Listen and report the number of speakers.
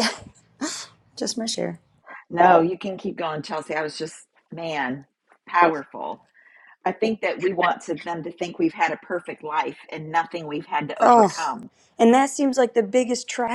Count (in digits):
2